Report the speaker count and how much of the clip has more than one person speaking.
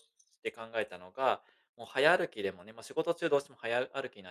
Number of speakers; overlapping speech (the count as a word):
one, no overlap